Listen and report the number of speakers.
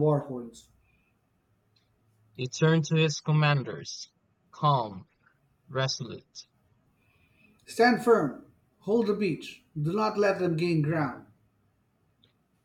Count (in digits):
2